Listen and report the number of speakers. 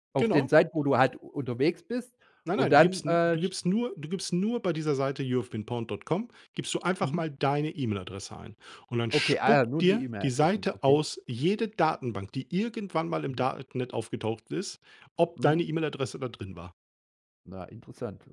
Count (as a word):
two